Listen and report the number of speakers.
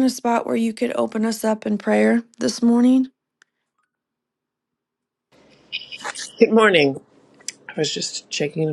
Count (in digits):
2